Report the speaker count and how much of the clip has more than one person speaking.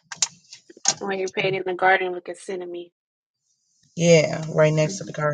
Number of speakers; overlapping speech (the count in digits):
2, about 6%